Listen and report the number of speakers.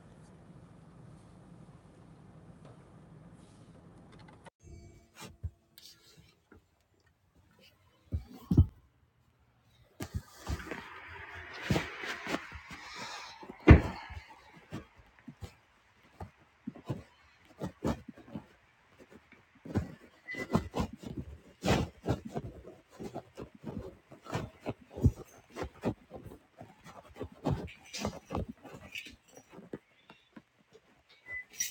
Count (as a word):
zero